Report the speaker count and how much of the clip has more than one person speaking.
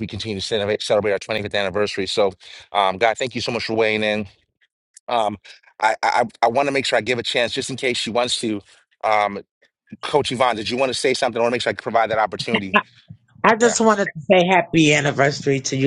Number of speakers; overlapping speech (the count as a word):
two, about 1%